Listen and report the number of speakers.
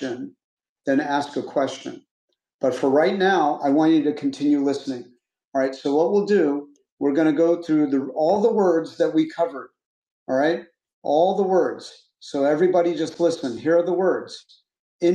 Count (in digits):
1